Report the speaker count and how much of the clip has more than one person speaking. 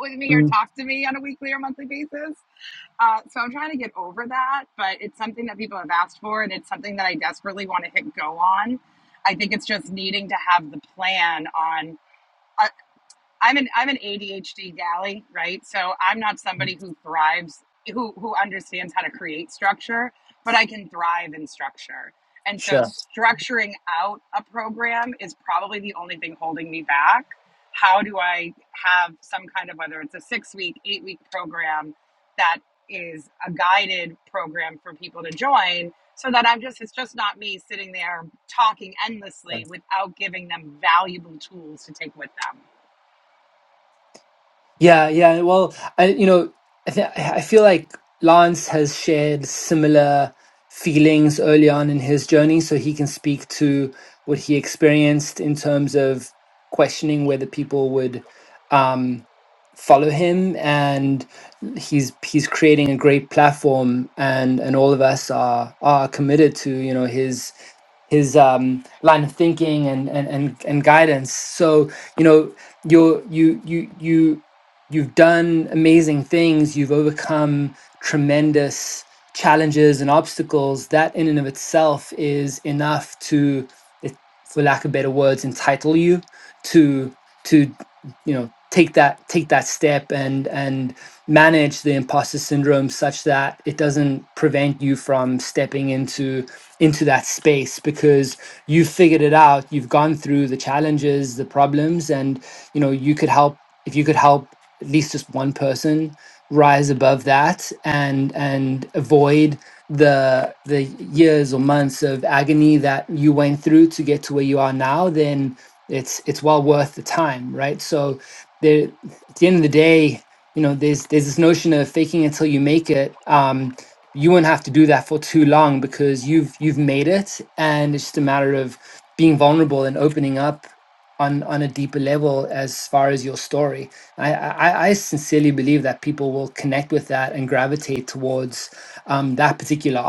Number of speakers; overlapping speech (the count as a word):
two, under 1%